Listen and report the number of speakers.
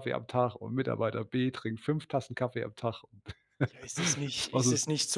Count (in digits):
2